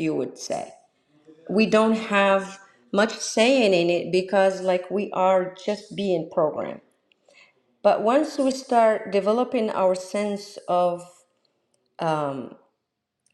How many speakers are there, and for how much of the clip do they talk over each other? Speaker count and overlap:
1, no overlap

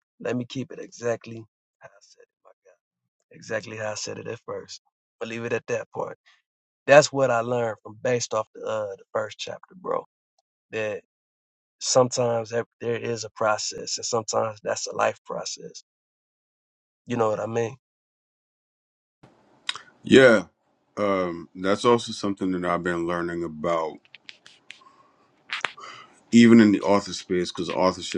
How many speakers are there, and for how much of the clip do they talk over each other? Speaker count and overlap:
2, no overlap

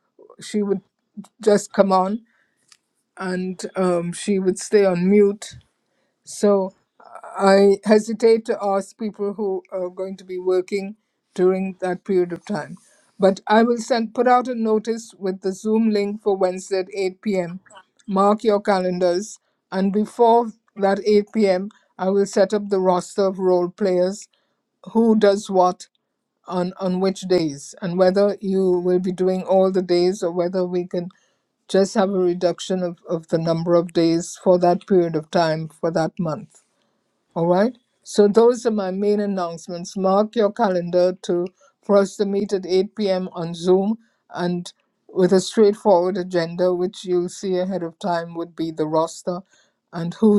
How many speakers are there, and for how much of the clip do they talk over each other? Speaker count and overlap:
1, no overlap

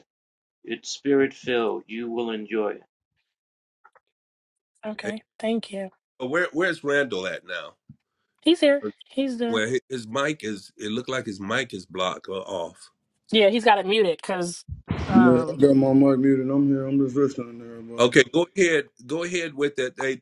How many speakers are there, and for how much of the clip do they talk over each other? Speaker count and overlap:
4, about 4%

